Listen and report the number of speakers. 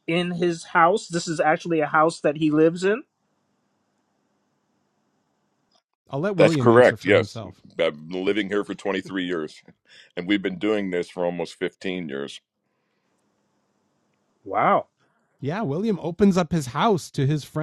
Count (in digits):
3